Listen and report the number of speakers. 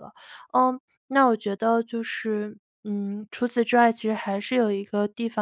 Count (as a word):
one